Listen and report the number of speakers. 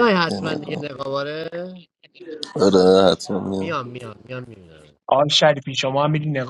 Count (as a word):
three